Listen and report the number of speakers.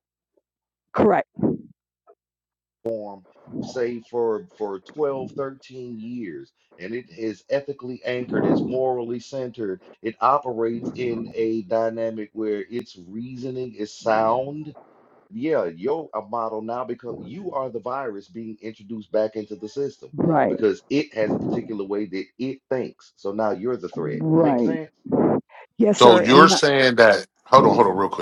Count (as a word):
three